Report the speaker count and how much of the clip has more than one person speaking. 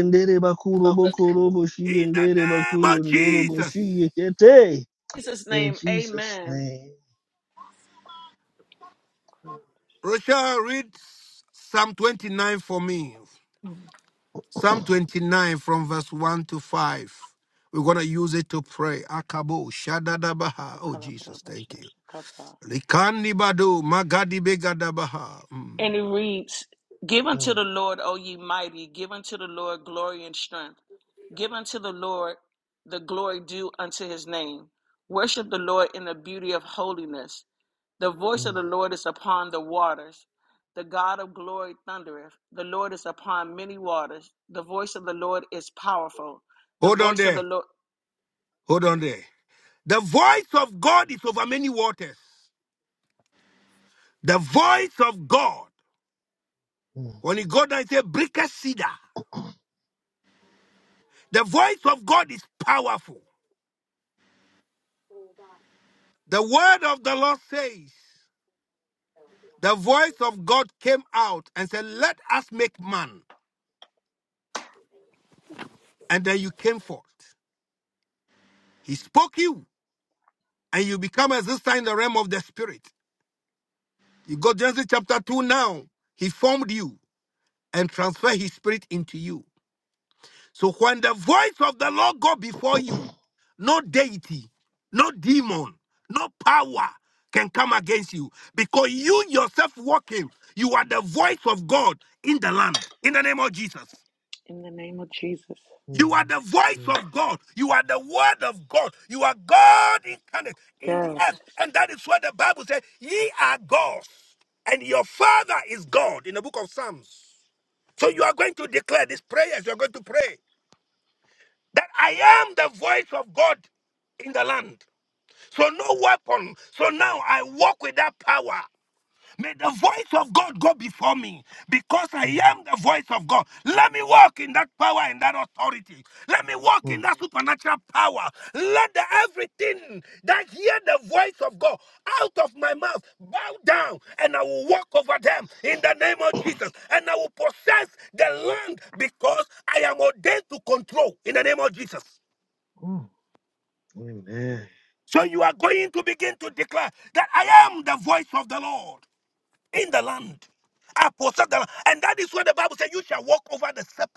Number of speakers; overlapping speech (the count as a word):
three, about 2%